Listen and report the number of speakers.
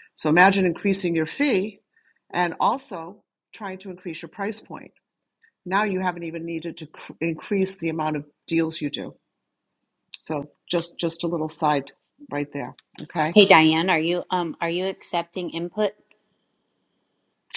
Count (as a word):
two